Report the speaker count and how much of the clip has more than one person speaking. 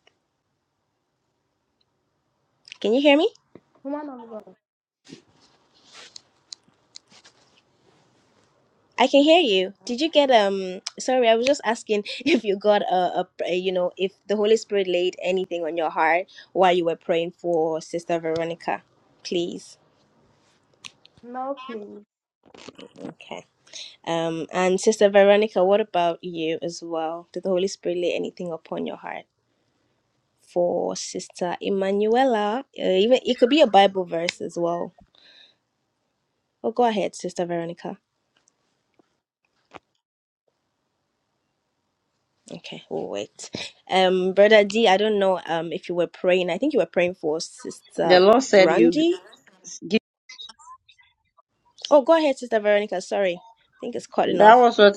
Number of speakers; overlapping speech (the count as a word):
three, about 2%